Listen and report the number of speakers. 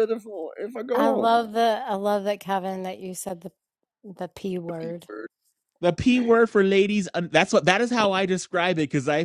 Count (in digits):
3